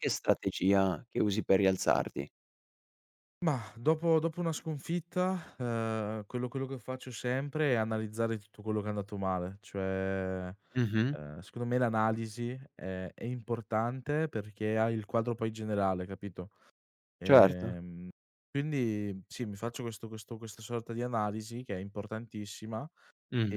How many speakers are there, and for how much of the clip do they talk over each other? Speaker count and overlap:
two, about 2%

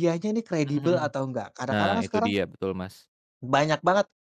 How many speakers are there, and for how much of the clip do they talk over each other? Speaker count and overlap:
two, about 25%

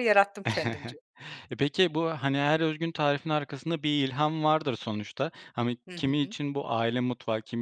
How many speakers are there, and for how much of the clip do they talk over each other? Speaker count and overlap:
two, about 6%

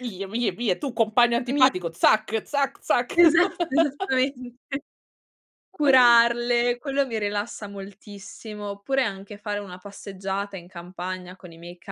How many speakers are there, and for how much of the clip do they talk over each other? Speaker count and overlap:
two, about 2%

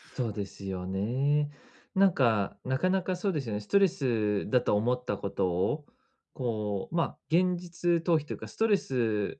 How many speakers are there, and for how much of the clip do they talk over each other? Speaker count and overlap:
one, no overlap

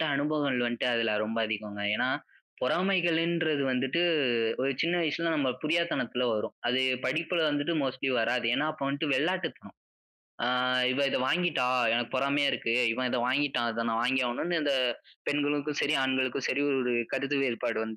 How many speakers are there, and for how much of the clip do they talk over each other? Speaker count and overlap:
one, no overlap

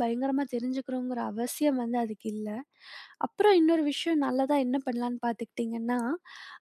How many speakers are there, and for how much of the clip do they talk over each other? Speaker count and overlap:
one, no overlap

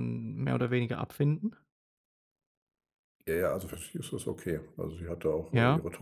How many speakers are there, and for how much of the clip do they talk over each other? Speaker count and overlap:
two, about 5%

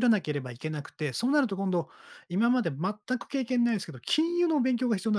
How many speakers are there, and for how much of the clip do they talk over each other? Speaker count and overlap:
one, no overlap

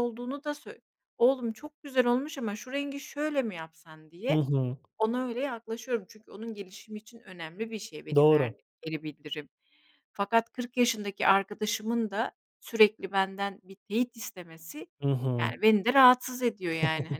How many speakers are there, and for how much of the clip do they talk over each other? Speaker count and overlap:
two, about 4%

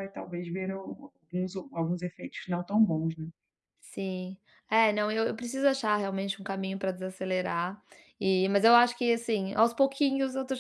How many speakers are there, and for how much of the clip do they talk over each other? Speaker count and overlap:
two, no overlap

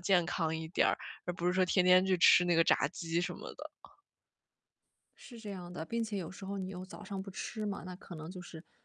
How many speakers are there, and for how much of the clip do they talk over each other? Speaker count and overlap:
two, no overlap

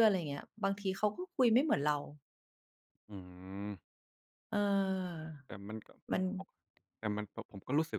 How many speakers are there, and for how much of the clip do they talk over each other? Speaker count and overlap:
two, about 3%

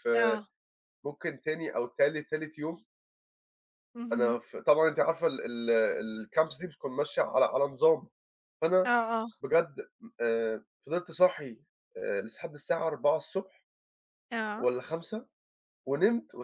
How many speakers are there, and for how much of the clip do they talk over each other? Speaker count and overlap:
two, about 2%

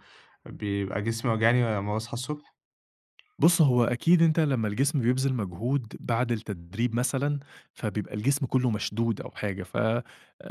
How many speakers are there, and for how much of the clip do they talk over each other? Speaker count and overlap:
two, no overlap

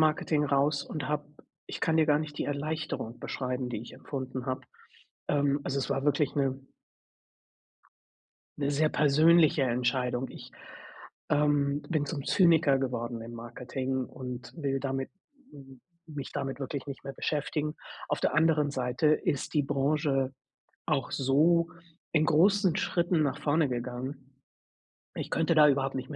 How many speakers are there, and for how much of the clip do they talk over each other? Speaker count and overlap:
one, no overlap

